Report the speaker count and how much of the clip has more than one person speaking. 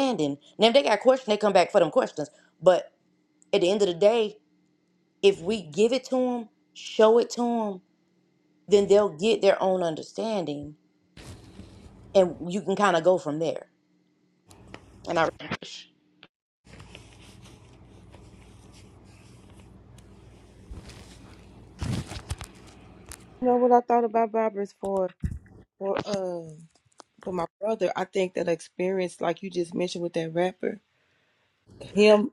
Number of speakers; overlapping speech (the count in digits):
2, no overlap